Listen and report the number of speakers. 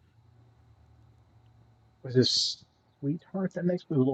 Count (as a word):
one